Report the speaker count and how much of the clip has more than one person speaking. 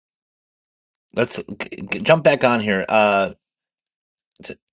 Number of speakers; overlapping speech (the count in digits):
1, no overlap